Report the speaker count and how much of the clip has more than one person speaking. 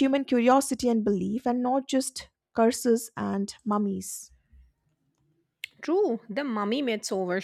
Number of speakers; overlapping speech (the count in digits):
2, no overlap